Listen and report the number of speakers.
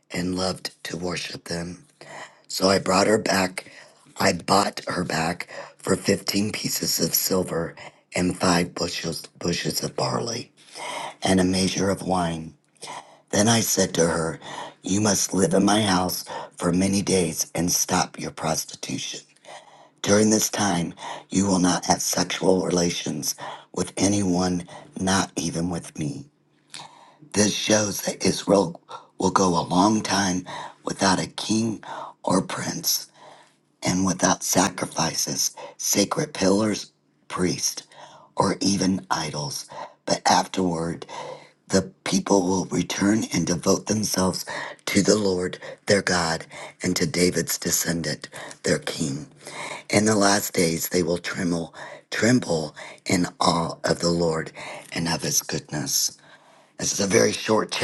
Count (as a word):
one